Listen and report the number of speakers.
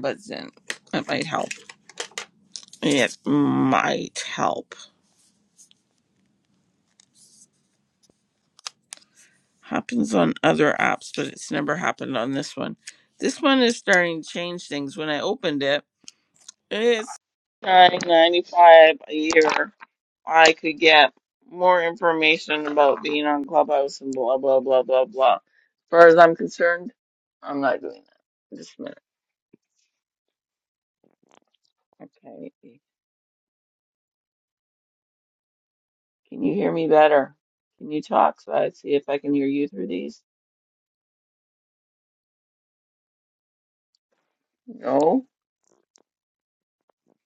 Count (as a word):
one